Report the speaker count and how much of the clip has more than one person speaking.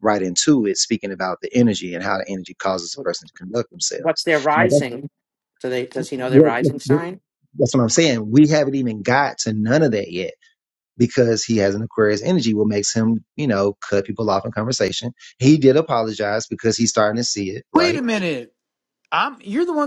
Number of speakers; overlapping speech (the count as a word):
three, about 7%